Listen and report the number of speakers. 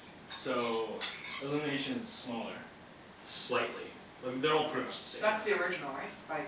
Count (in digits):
3